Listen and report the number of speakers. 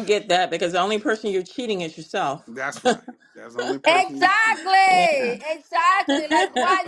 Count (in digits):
3